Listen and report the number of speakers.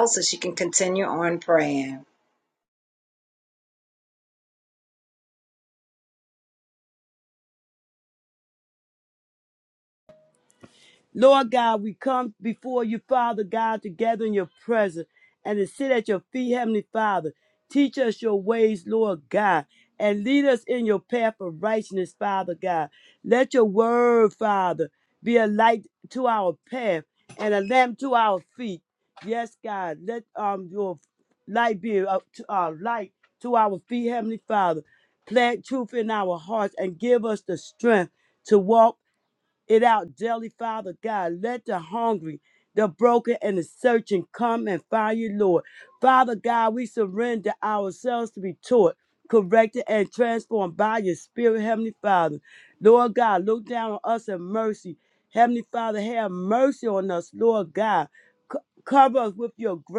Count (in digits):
2